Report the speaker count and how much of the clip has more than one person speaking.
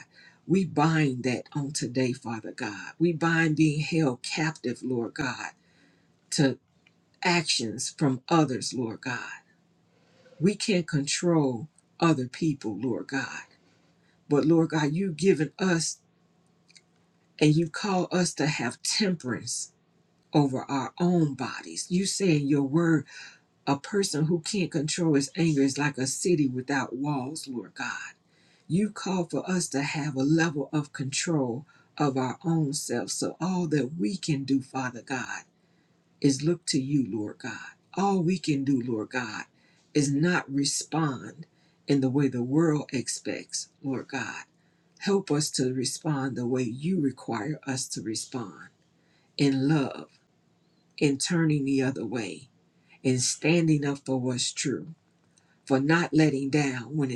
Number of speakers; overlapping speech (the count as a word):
one, no overlap